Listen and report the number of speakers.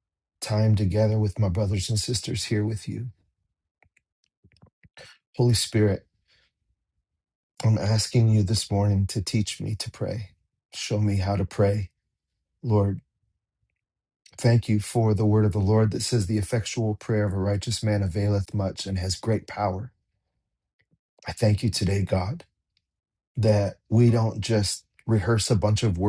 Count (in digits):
1